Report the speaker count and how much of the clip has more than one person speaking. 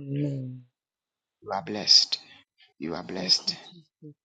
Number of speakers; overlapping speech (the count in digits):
2, about 11%